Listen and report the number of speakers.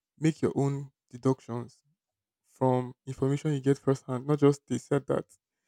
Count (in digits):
1